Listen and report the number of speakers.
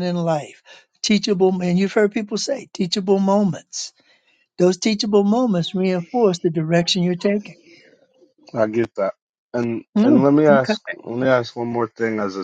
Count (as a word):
two